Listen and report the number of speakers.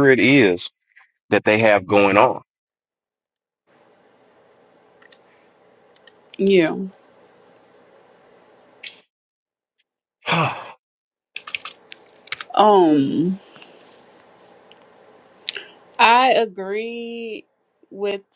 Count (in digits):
2